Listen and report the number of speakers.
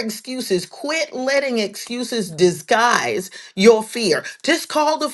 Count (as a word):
one